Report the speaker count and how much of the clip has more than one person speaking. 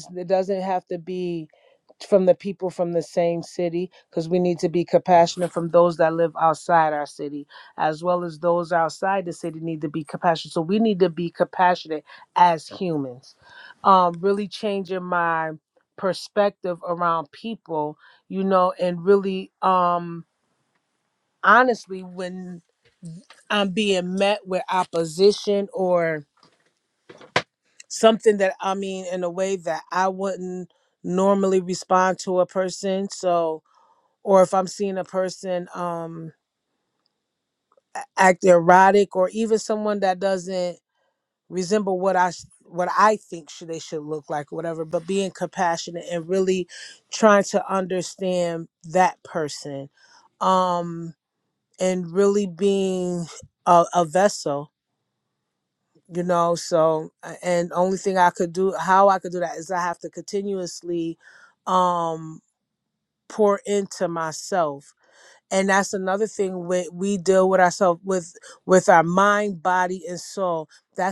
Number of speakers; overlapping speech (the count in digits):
1, no overlap